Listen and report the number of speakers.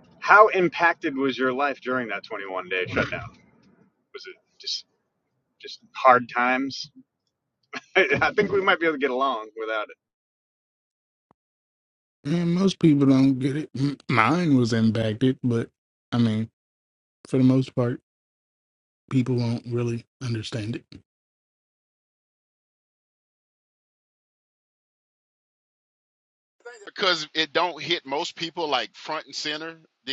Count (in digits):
3